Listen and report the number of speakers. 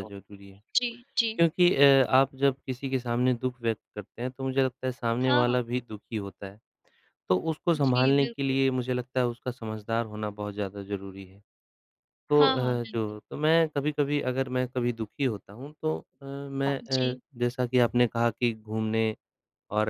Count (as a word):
two